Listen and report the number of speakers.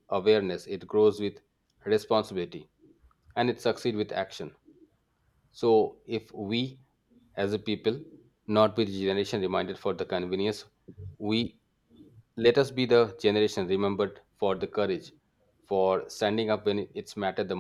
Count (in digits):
1